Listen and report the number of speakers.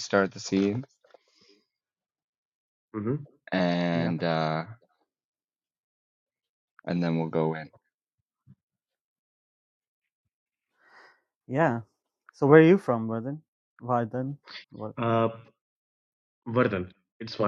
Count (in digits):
3